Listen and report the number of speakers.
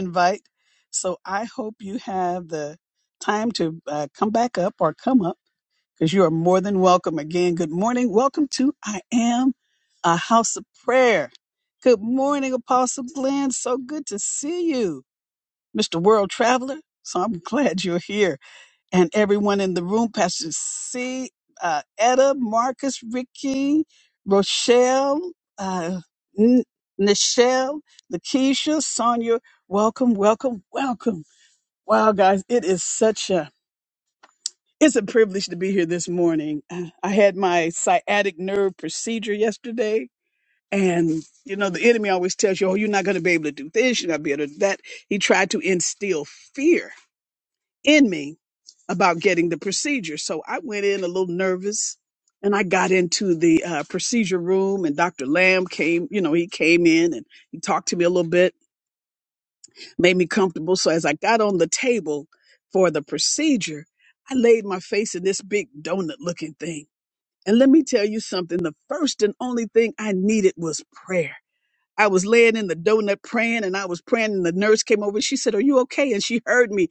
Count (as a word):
one